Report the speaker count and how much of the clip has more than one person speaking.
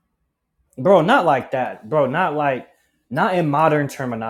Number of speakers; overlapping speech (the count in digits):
1, no overlap